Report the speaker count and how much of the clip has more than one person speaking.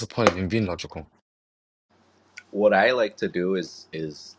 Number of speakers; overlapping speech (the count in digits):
2, no overlap